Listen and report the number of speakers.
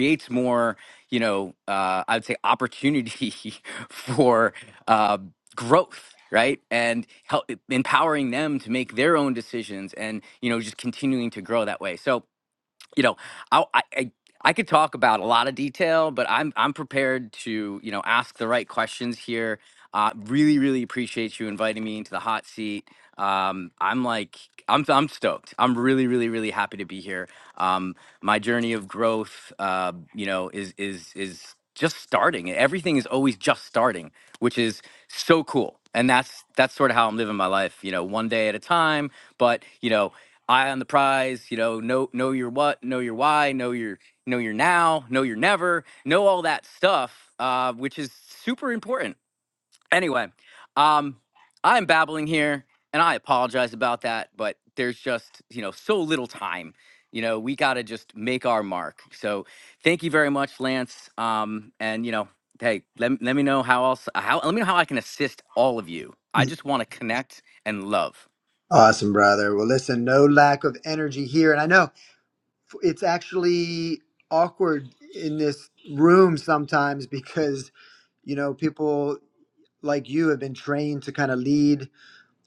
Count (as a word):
two